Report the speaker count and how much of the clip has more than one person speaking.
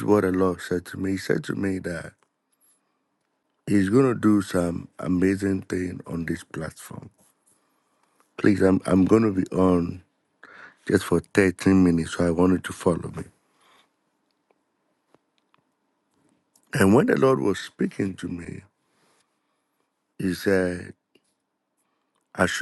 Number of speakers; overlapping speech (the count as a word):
one, no overlap